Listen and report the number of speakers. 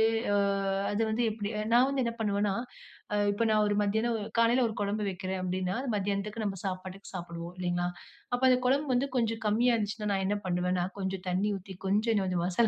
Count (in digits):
1